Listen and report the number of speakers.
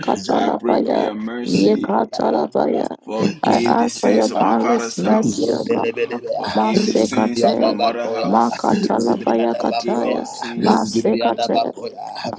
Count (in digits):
3